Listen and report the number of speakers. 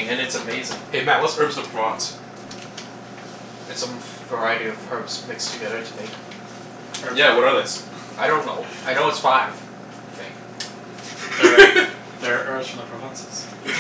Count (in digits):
3